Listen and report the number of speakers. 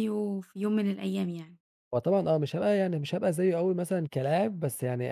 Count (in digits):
2